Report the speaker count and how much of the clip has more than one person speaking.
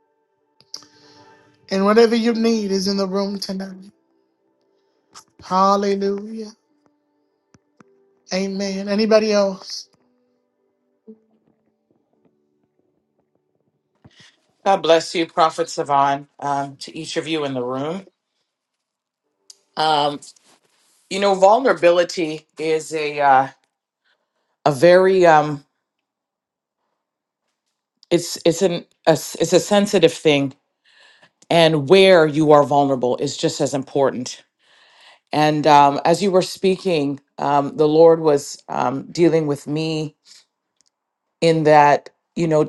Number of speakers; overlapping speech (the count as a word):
two, no overlap